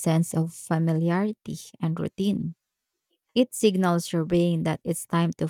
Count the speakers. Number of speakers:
1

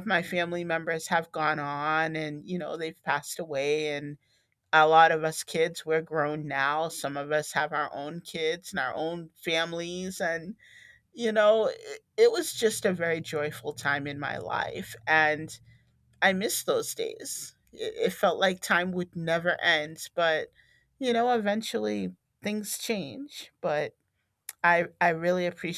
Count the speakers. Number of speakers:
1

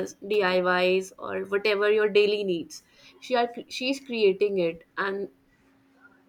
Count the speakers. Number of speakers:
1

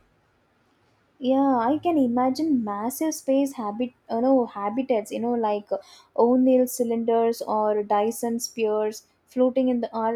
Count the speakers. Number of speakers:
1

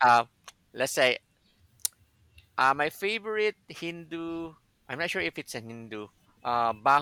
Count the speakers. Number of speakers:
1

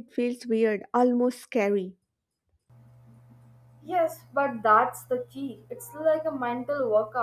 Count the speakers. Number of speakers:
2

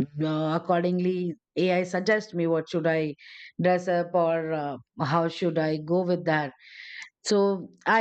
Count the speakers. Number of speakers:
1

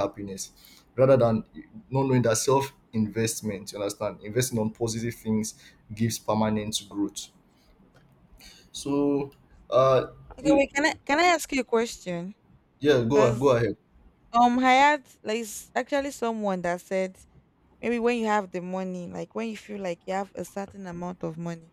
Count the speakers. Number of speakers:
2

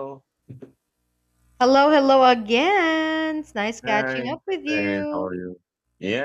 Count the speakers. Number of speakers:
2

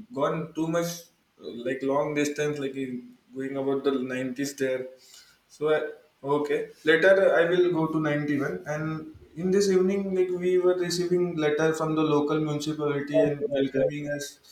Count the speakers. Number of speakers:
1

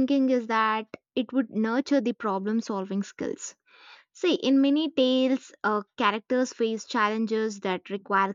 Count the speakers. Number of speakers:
1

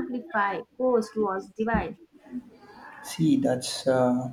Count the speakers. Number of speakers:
2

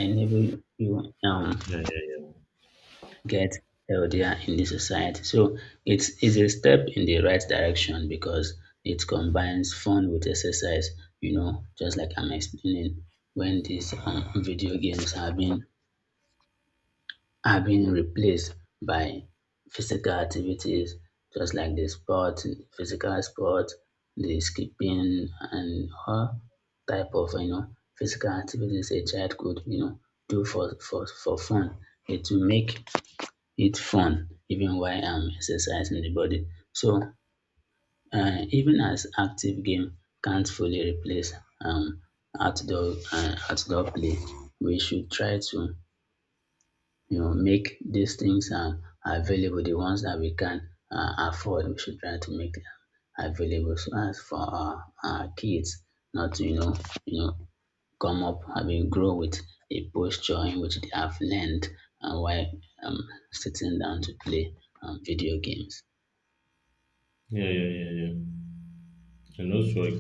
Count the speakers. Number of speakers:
2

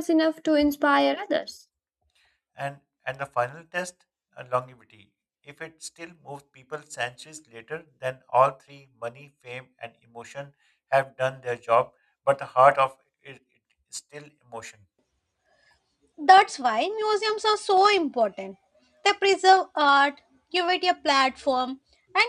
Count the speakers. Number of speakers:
3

